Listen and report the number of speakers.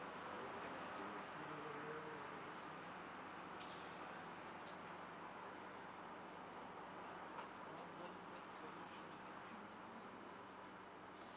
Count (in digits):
1